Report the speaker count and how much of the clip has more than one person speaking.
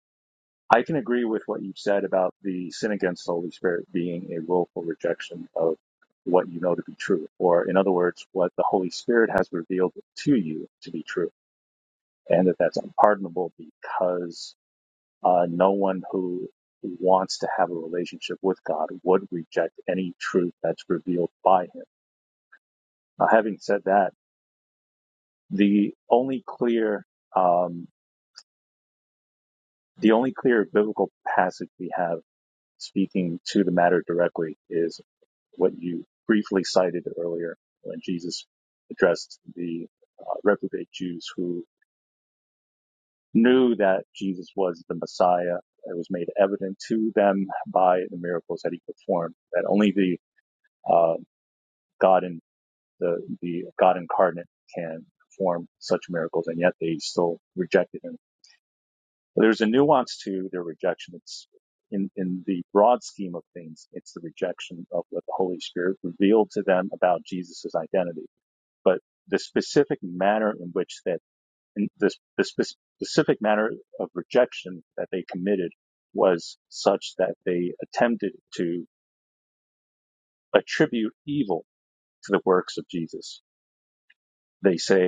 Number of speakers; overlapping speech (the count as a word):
one, no overlap